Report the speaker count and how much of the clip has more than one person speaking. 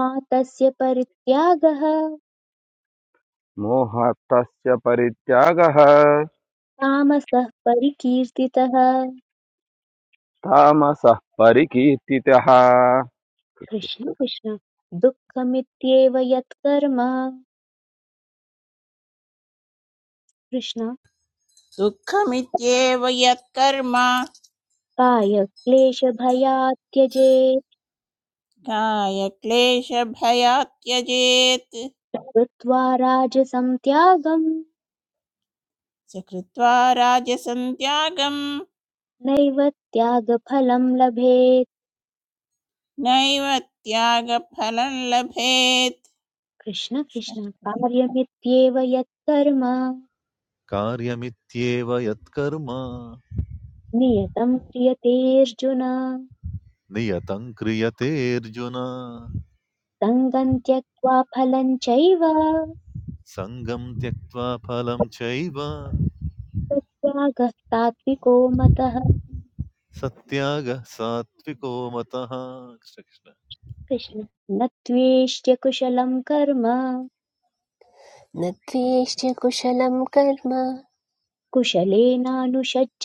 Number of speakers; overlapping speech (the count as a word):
five, no overlap